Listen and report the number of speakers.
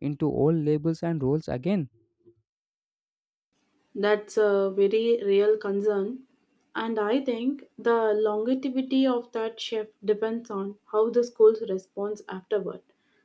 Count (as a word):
two